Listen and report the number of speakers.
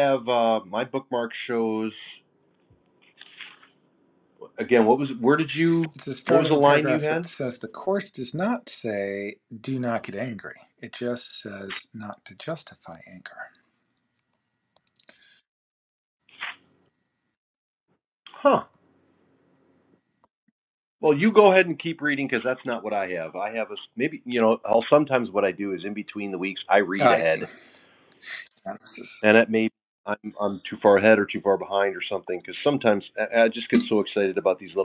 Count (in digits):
2